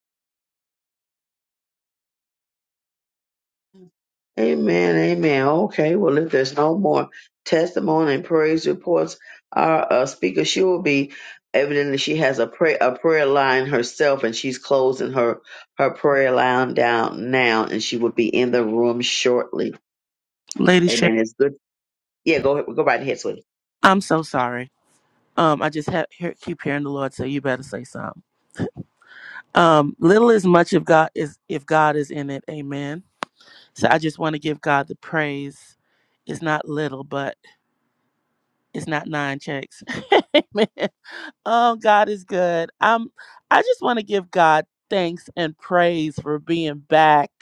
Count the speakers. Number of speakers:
two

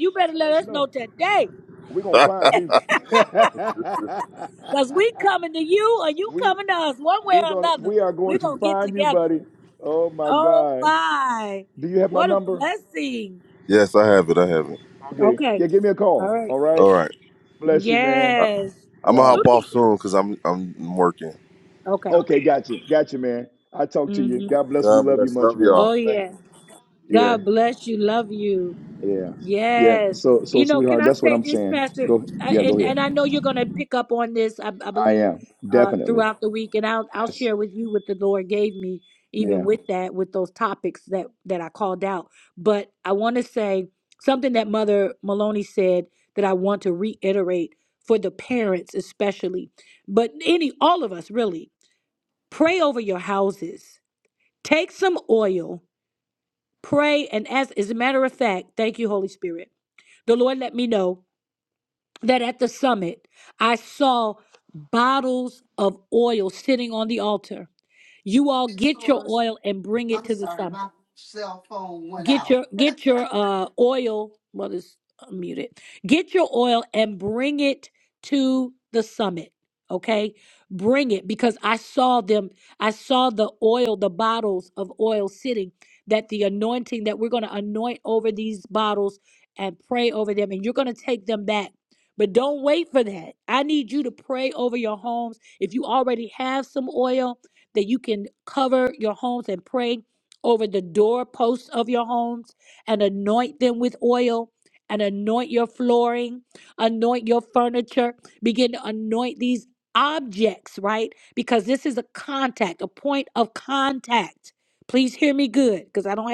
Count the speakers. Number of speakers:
four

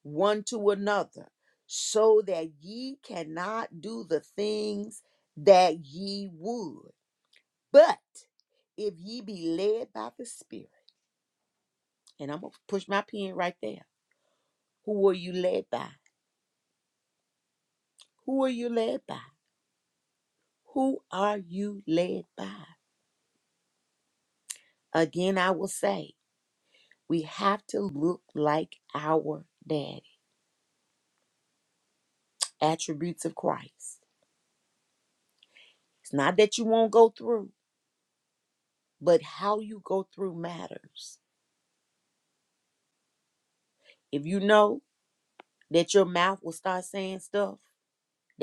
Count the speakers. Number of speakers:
one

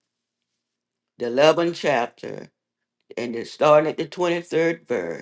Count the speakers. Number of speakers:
one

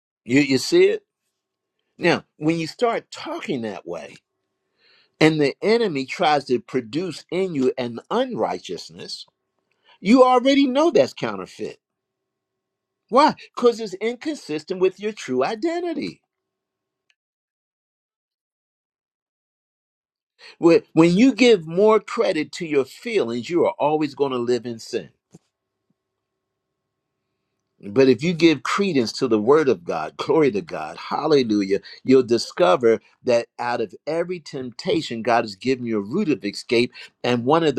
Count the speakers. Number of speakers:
one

